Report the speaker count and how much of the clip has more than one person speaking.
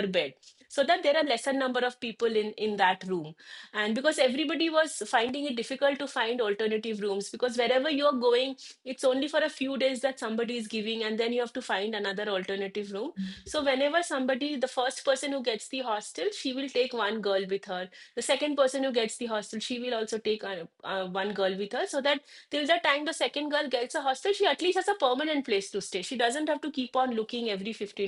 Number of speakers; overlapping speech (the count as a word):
one, no overlap